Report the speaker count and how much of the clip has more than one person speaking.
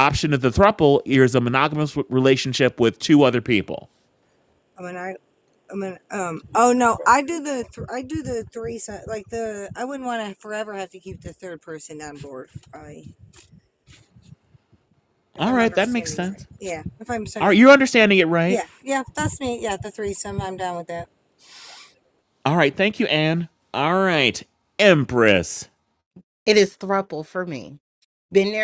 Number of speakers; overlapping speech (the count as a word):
three, about 4%